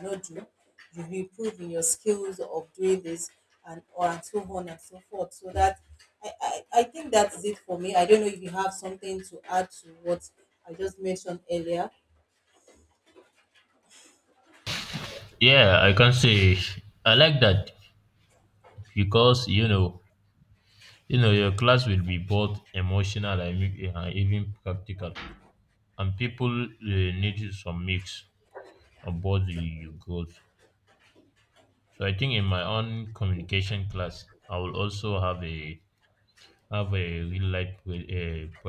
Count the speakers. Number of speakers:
2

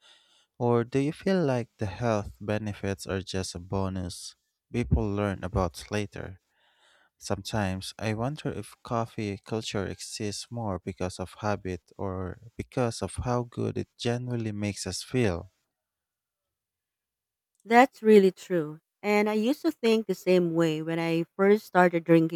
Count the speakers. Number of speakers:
2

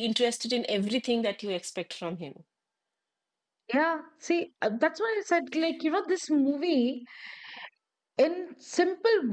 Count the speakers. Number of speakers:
2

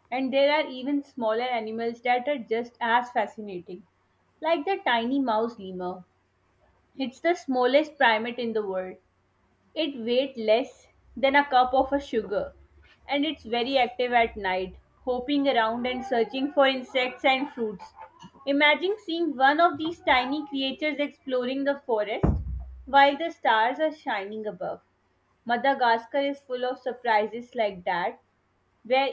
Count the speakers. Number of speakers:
1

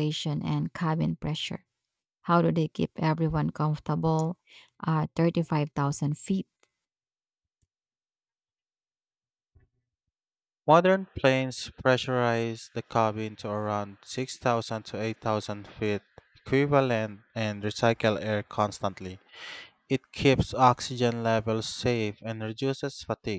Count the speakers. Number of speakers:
2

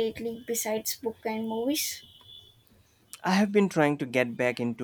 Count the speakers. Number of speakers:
2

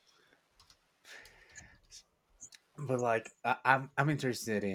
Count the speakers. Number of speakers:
1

